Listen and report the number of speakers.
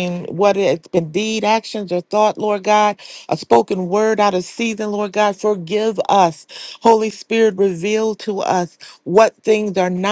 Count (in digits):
1